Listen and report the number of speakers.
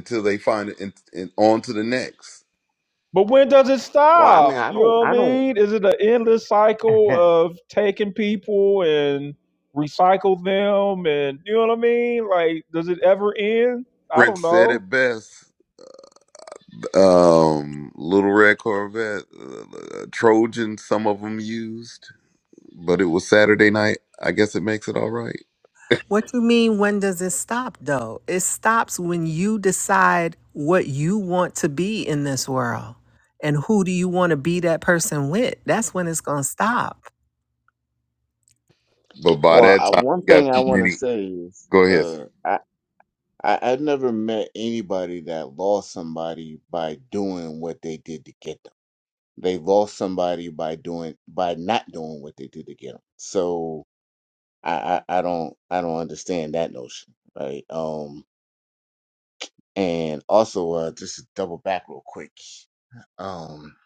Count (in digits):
4